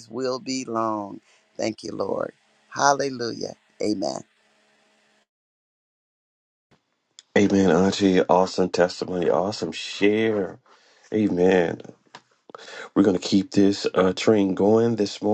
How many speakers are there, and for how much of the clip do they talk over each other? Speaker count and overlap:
2, no overlap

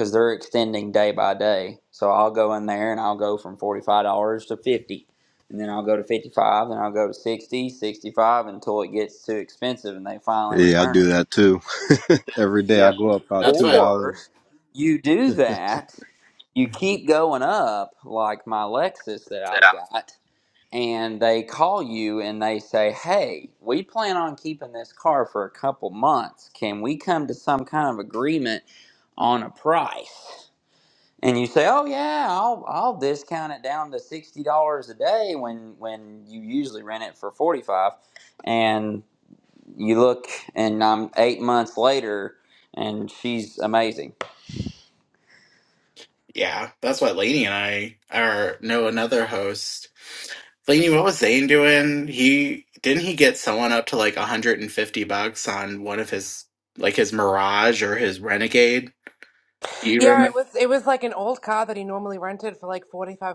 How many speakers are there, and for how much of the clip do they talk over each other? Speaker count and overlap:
4, about 3%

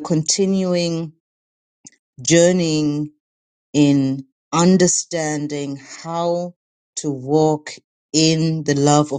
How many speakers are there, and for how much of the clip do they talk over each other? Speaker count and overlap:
1, no overlap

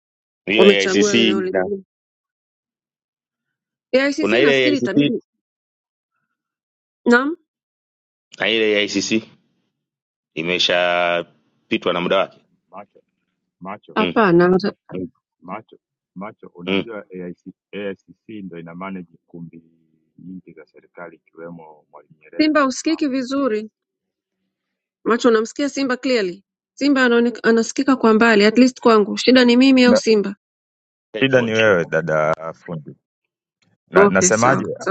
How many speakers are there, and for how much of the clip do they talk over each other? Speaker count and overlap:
3, about 12%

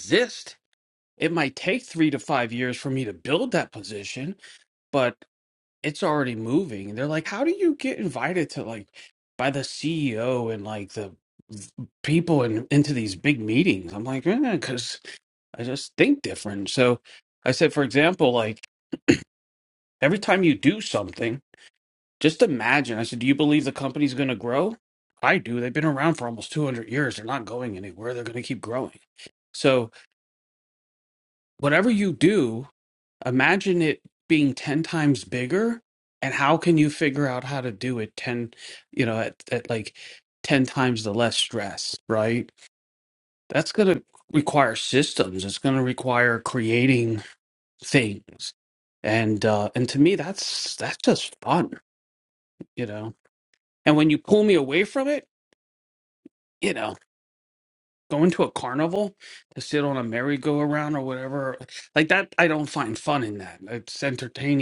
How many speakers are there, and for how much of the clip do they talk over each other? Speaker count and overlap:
1, no overlap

